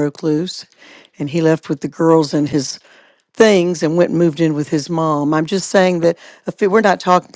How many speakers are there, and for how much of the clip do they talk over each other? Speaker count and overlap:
one, no overlap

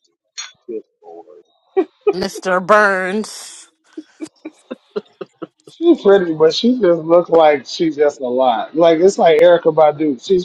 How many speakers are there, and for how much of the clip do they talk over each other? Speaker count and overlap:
two, no overlap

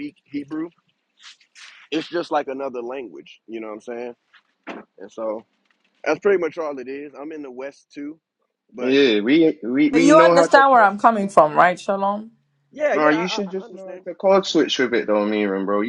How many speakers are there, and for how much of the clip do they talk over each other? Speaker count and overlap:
three, about 14%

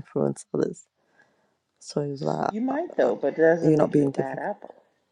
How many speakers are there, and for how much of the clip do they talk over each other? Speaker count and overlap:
two, about 28%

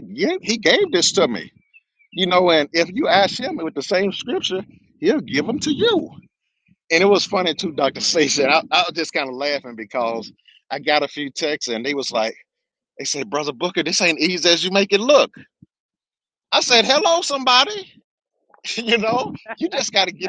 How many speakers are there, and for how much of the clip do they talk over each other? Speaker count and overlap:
one, no overlap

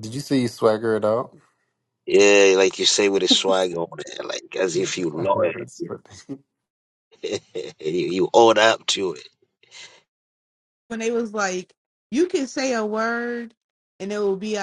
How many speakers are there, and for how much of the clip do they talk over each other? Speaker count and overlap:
three, about 5%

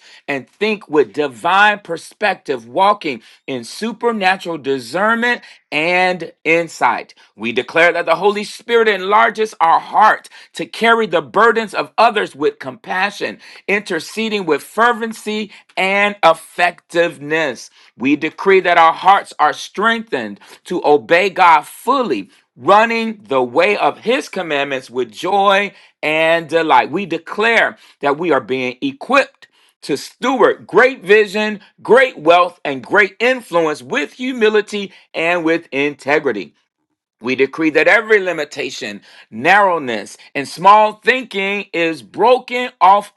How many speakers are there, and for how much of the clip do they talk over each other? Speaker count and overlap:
one, no overlap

